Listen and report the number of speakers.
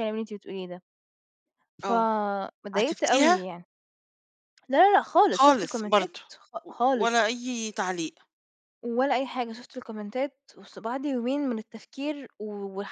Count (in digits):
2